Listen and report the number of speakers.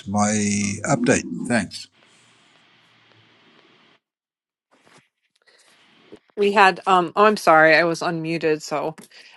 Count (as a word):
two